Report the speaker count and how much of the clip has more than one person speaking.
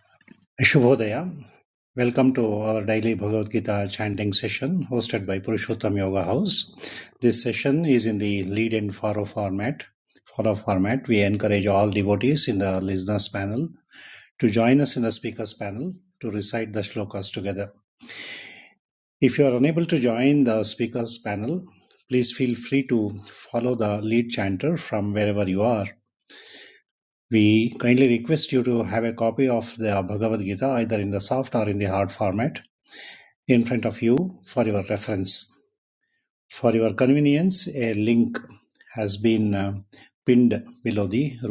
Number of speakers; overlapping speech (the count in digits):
1, no overlap